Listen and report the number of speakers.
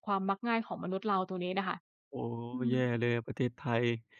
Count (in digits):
2